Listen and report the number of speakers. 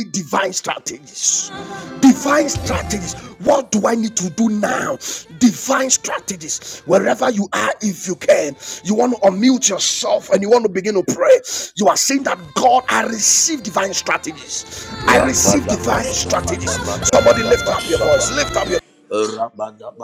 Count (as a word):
two